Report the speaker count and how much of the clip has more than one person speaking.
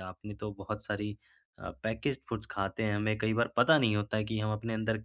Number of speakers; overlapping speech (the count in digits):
1, no overlap